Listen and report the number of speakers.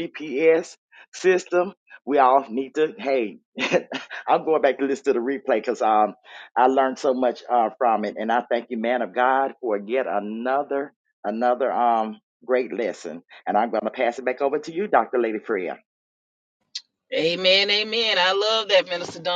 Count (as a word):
two